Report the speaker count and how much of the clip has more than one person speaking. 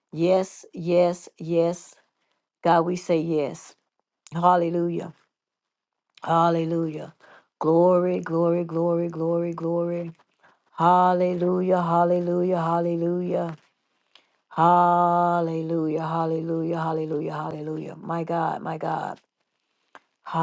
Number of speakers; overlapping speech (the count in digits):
1, no overlap